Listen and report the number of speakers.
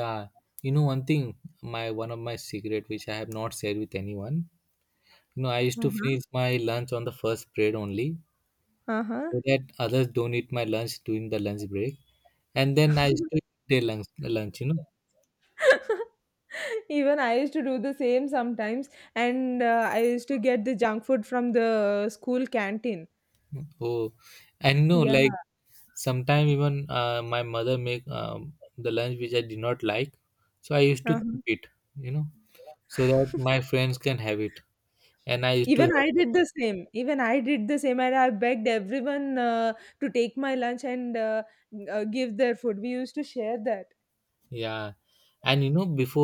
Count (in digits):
2